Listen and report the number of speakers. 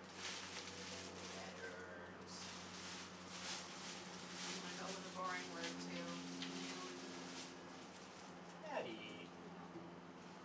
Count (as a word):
two